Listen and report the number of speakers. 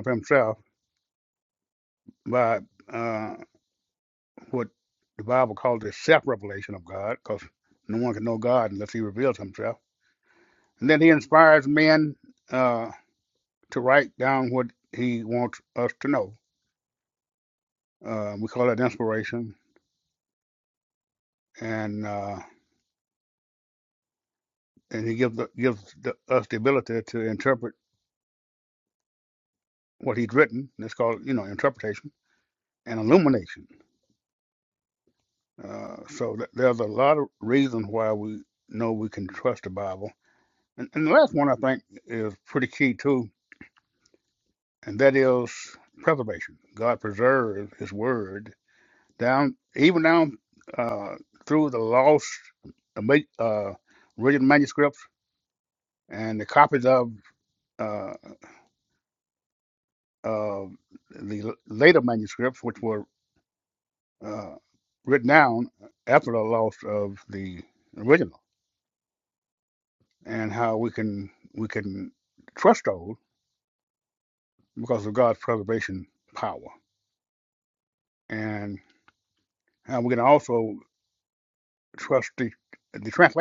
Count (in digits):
1